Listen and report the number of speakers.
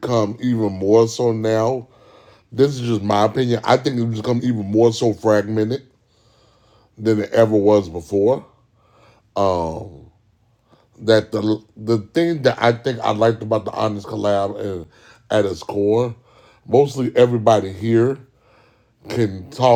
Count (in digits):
1